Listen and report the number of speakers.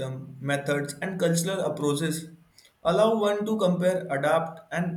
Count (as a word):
one